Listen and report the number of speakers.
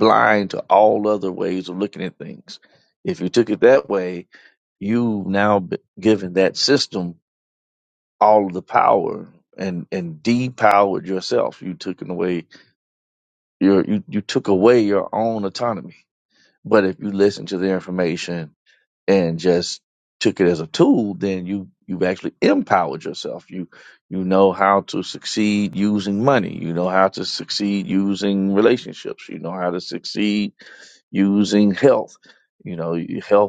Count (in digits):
1